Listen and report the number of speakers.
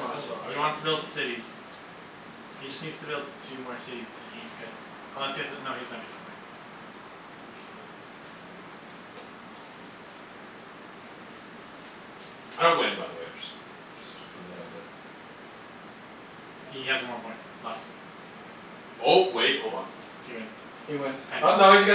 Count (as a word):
three